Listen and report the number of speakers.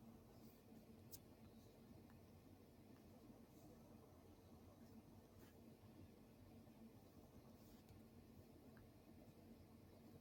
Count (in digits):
0